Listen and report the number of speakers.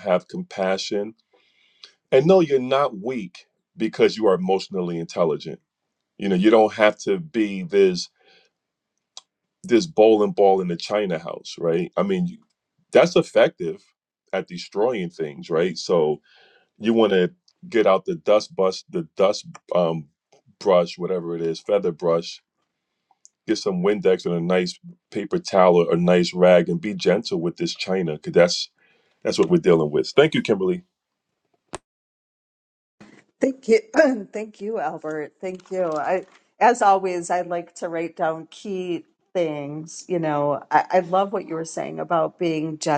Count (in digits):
2